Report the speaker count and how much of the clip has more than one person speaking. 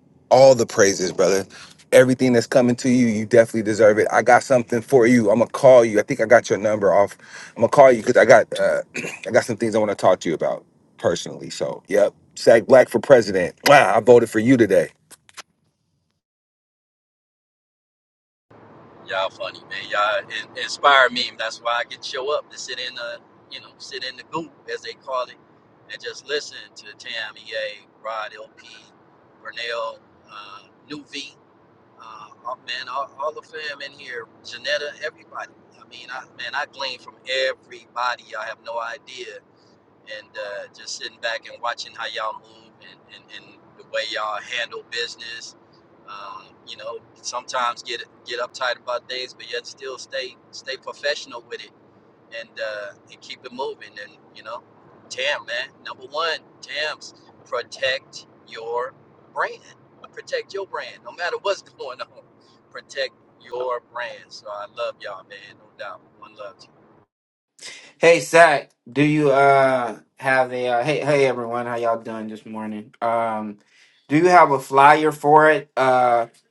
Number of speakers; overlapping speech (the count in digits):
3, no overlap